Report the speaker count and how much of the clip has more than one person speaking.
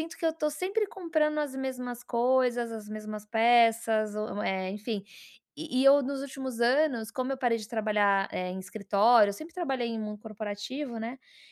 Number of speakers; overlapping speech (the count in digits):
1, no overlap